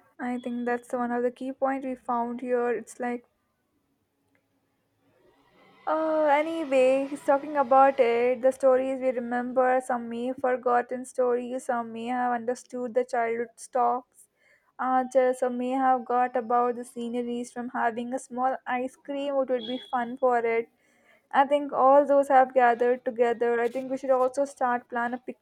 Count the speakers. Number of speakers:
1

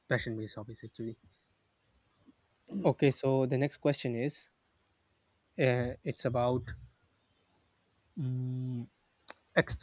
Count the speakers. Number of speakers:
1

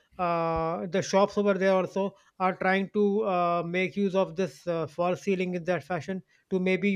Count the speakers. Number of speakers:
1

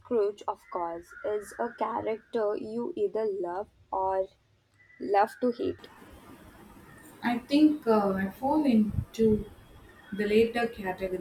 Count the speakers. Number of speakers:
2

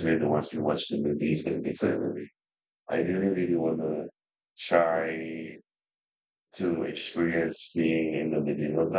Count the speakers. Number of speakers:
1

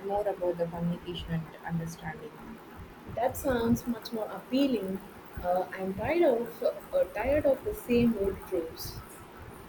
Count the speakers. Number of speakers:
2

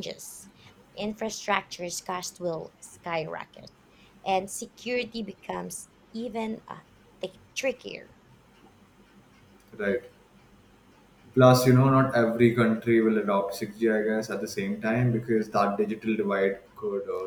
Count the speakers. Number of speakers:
2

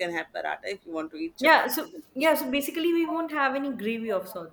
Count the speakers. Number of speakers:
2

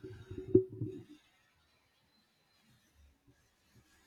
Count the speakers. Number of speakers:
0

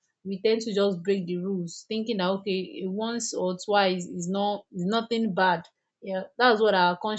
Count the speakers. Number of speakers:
1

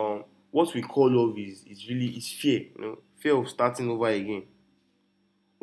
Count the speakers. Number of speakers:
1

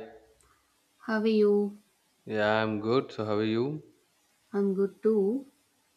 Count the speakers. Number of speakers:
2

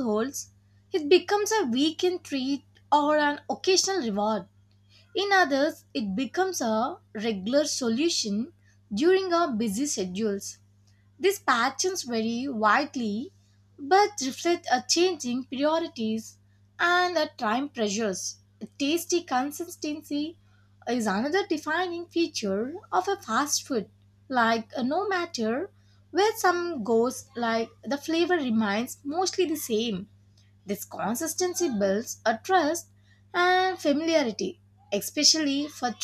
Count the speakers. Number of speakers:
1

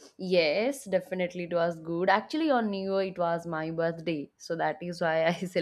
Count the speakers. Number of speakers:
1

